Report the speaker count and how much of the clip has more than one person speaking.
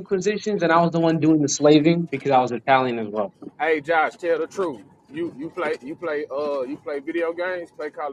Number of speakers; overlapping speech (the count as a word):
two, no overlap